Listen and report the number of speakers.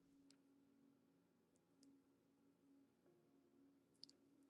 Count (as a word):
zero